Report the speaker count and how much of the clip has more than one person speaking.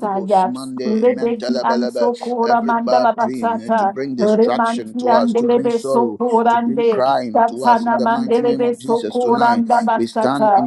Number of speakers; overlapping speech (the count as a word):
two, about 83%